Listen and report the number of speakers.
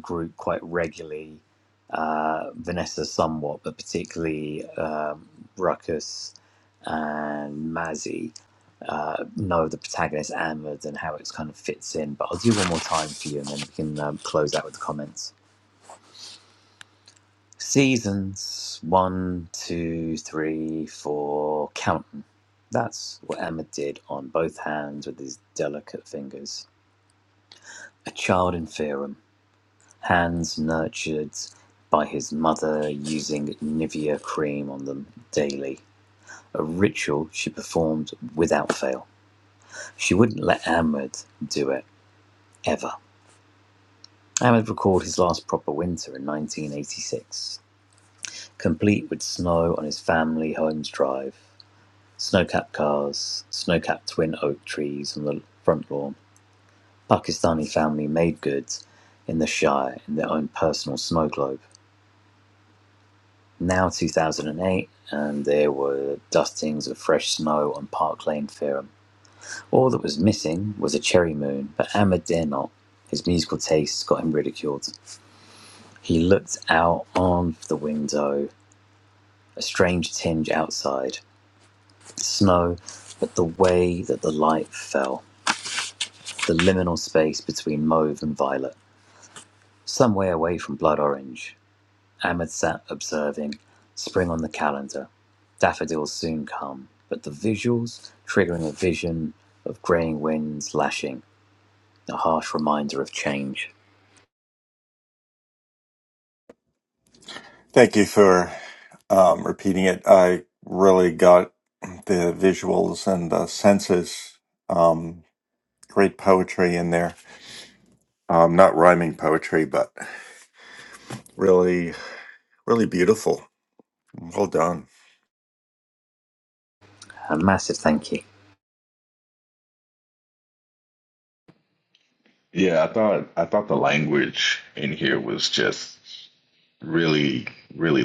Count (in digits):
3